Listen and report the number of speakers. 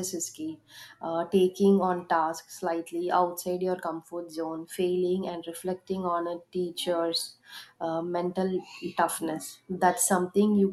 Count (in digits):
1